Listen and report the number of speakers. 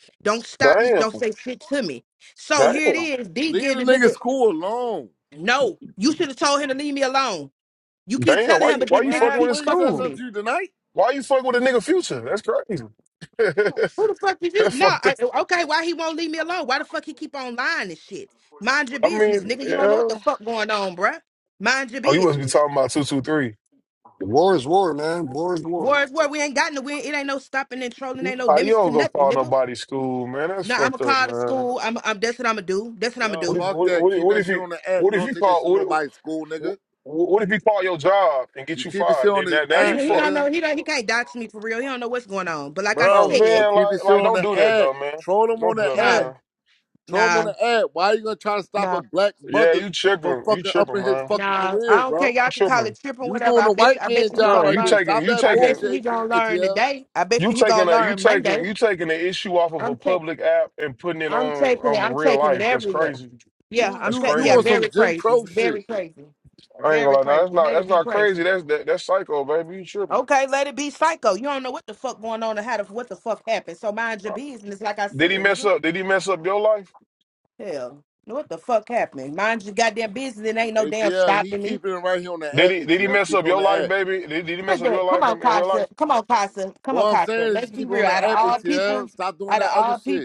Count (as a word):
four